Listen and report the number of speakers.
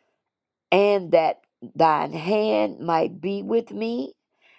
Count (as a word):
one